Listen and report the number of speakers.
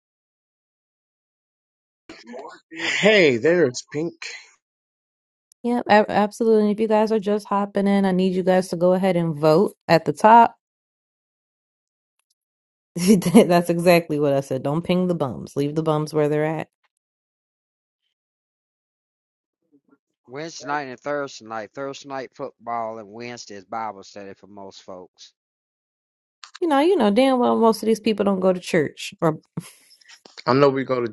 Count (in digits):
3